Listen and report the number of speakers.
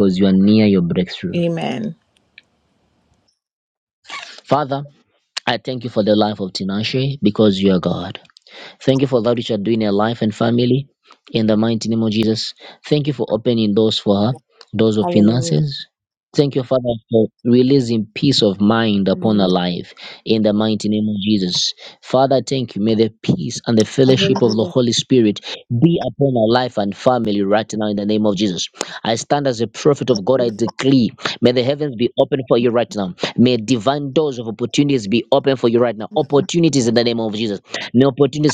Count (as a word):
two